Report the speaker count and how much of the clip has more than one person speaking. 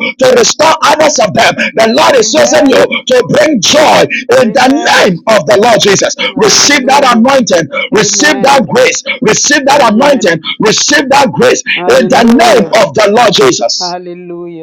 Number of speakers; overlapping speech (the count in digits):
2, about 33%